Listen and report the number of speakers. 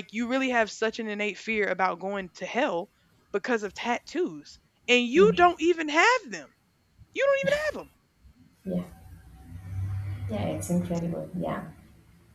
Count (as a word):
two